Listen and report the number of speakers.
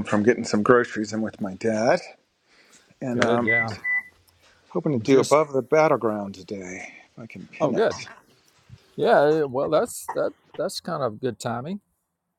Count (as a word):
two